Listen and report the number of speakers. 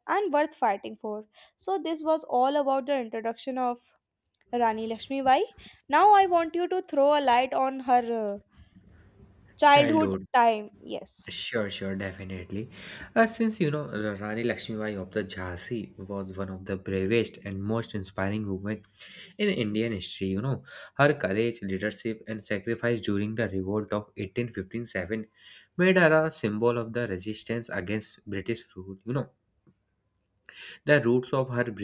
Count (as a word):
two